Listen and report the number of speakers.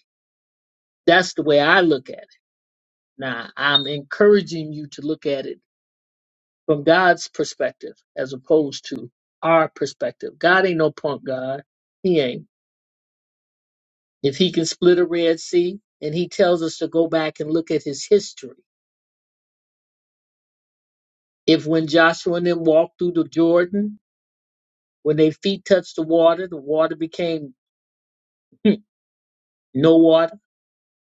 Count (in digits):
1